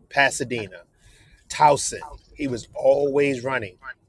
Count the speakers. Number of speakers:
1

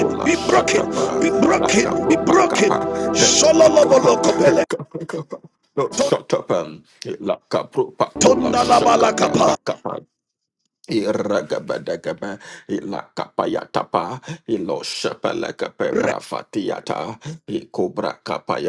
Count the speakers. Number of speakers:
2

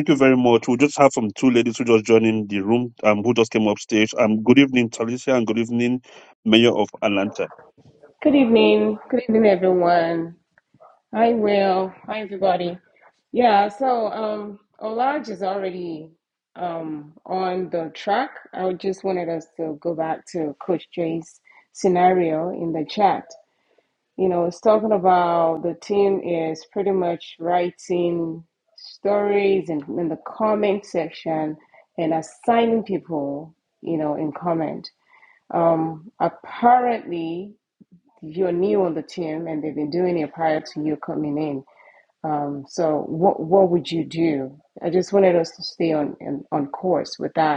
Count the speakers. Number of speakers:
2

